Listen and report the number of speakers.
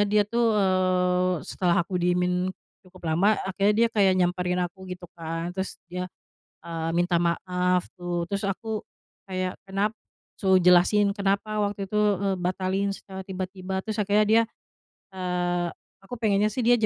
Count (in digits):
1